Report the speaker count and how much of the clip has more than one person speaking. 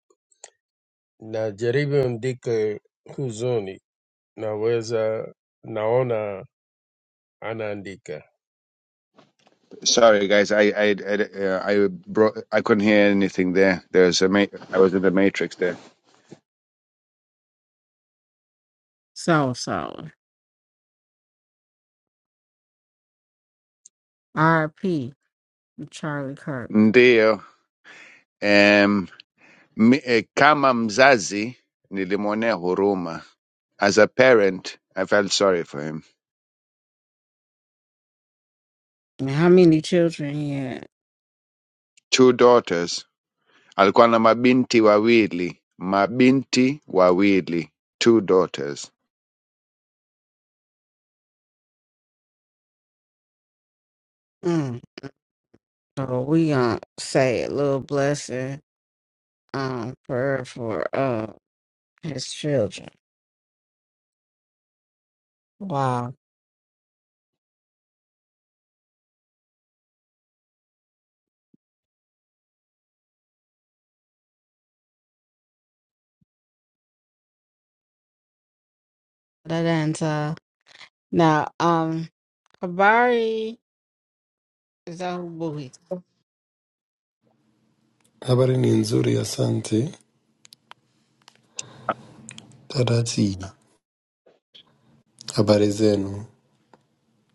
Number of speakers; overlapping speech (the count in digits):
4, under 1%